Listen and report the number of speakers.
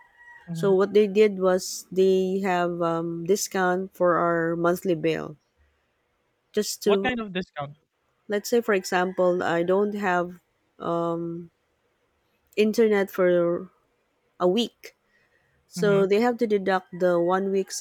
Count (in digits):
2